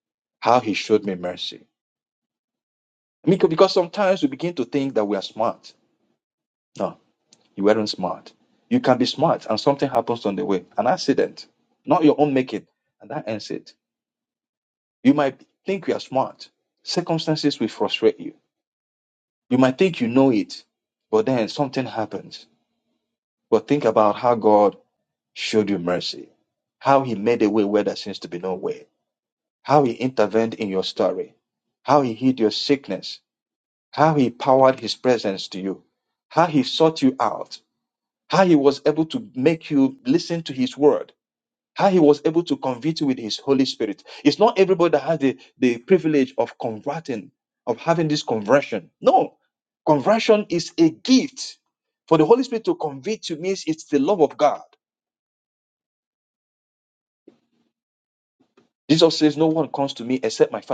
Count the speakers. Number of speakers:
1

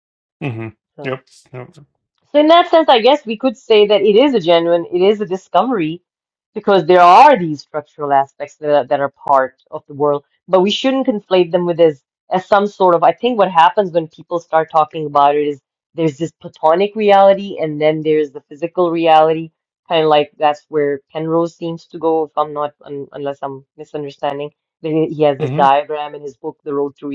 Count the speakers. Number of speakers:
2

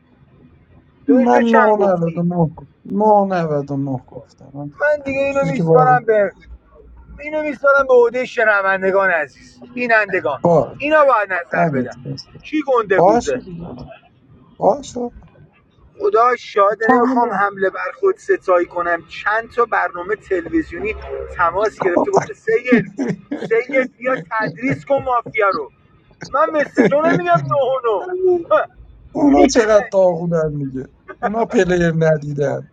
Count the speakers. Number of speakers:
2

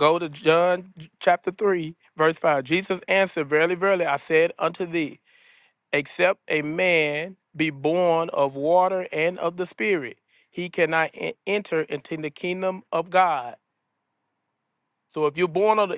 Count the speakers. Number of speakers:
1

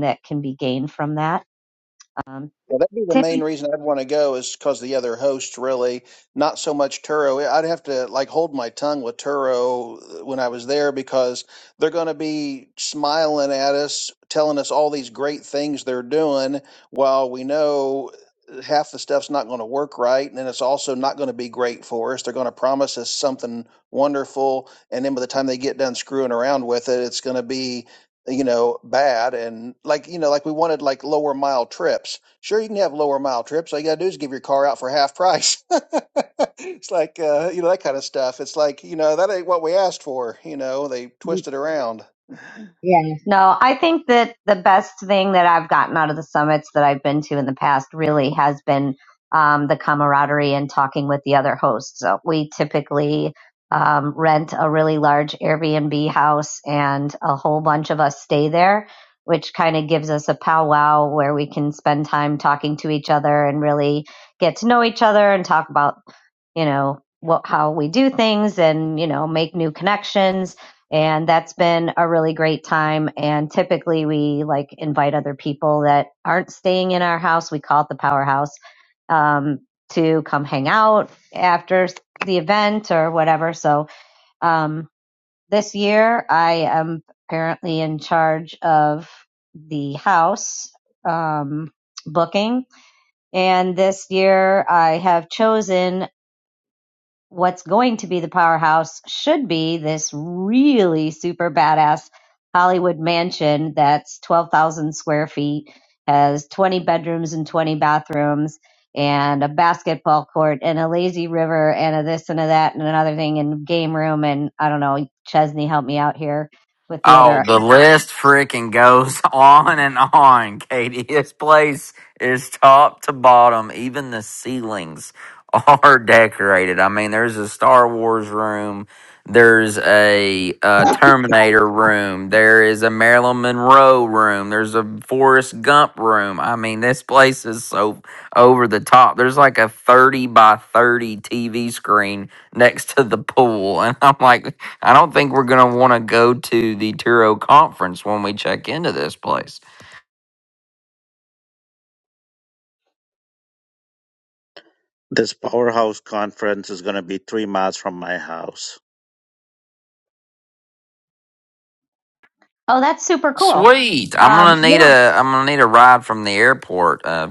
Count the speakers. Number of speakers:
4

